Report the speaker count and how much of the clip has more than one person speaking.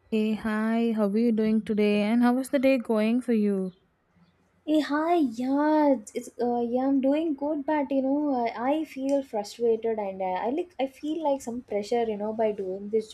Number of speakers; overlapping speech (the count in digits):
2, no overlap